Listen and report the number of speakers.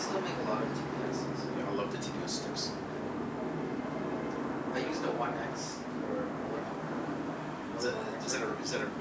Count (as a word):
two